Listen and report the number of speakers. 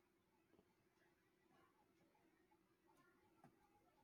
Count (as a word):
zero